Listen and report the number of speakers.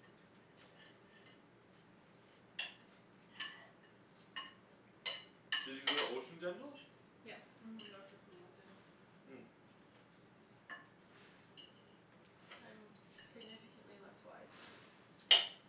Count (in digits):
3